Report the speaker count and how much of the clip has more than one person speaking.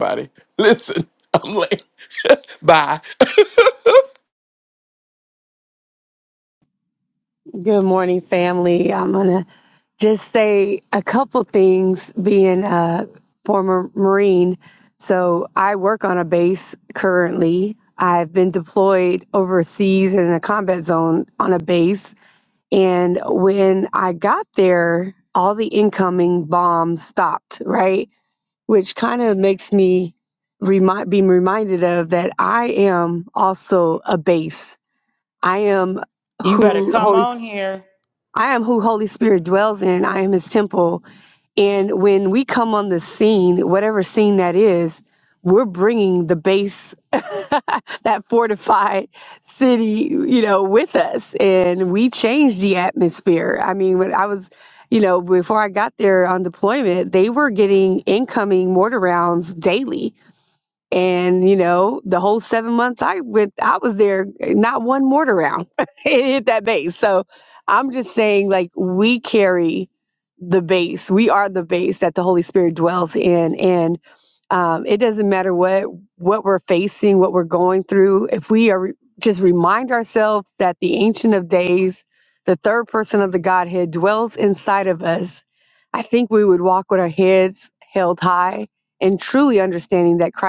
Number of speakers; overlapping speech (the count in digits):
3, about 1%